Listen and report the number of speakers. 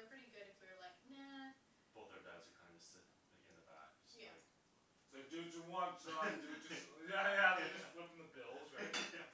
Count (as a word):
three